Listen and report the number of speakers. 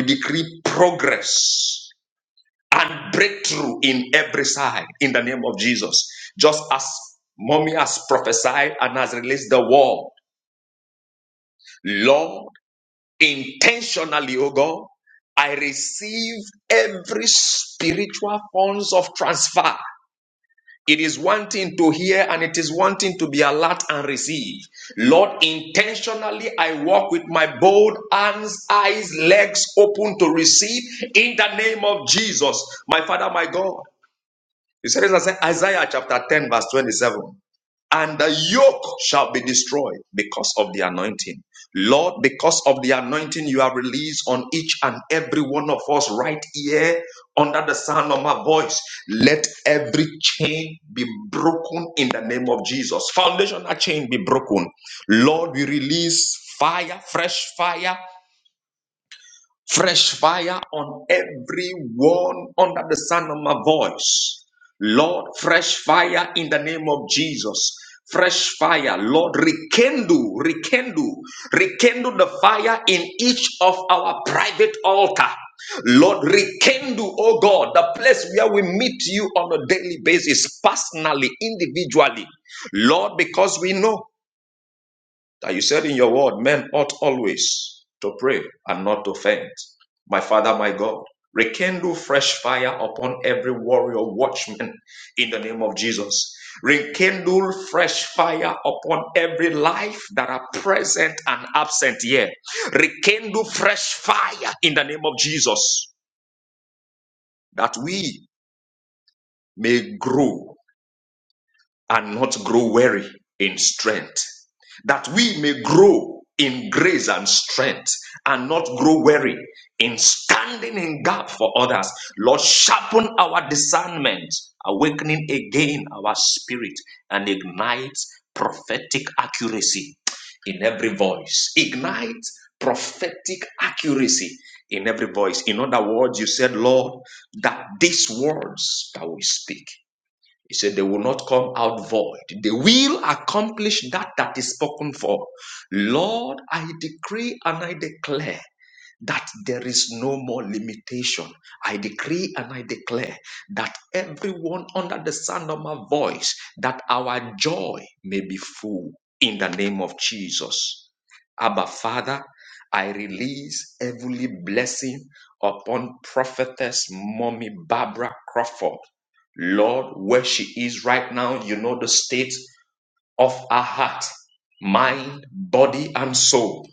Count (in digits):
1